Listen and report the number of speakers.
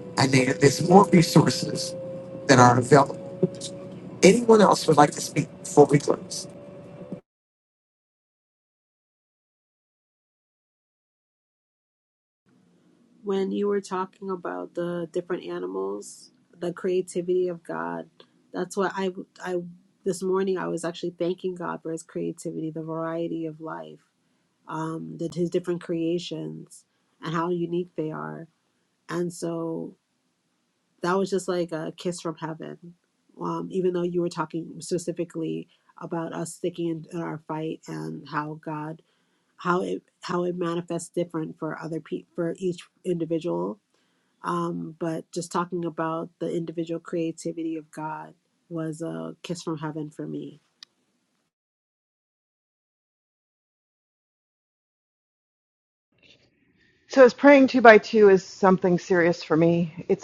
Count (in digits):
3